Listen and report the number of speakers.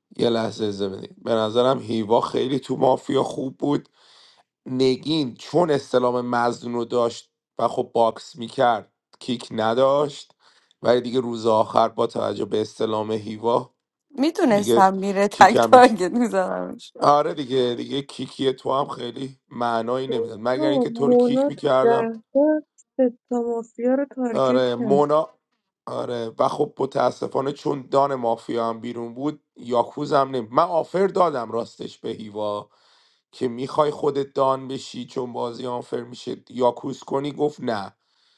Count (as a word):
three